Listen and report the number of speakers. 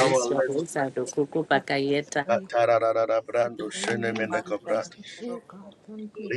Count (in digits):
3